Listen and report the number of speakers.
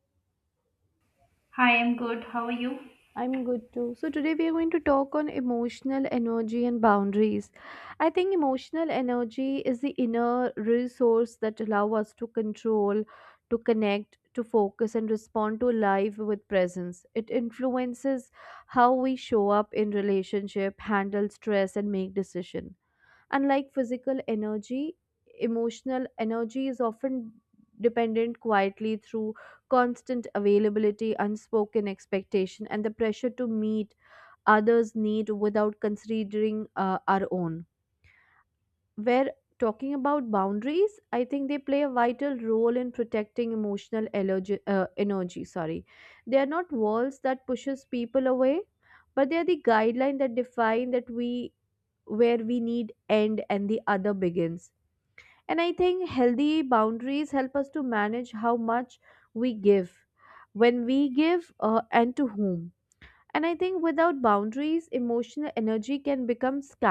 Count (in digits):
2